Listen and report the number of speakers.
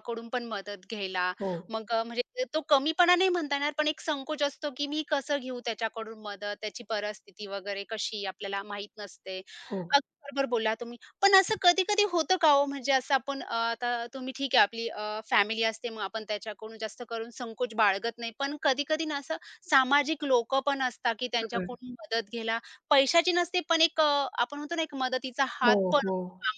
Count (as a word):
two